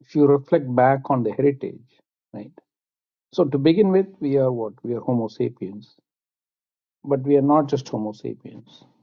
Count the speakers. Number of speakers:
one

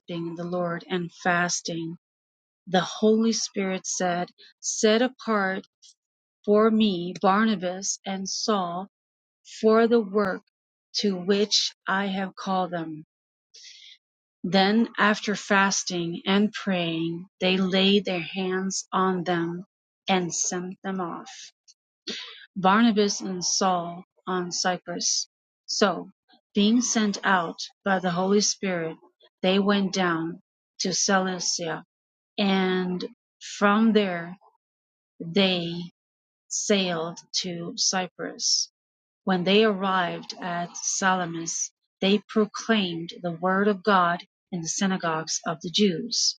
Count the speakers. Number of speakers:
one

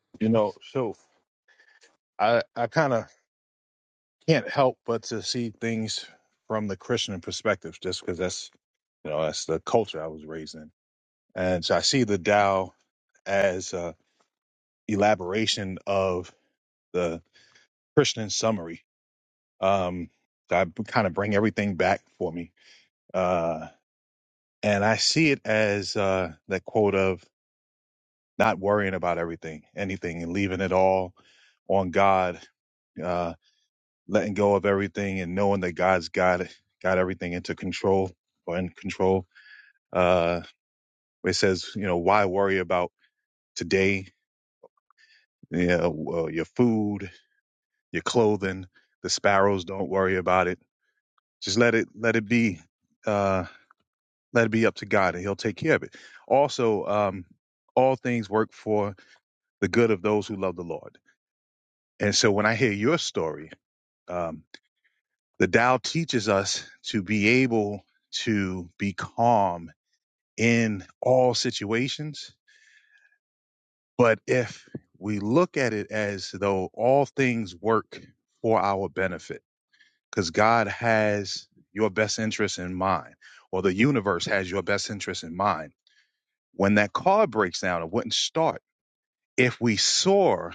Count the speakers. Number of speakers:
one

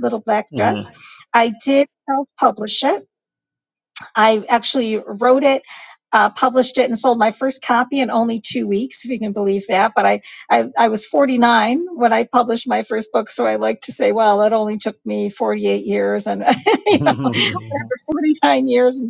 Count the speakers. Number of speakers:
two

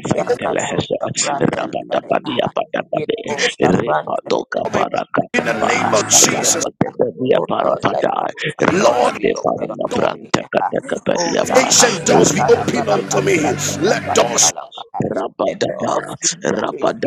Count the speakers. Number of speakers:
three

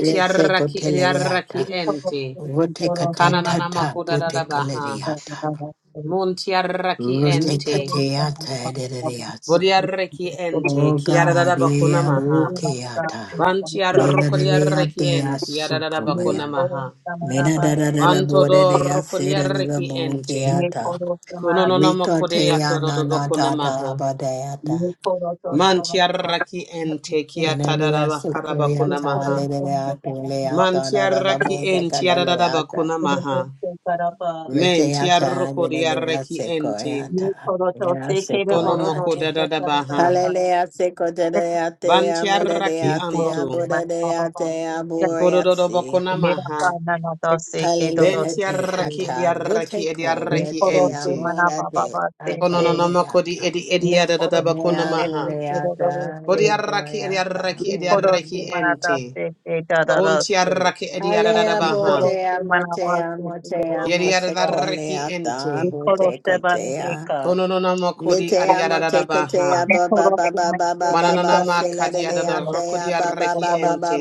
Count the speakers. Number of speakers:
three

